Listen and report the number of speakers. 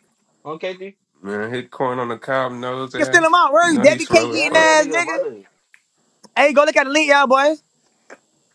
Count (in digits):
3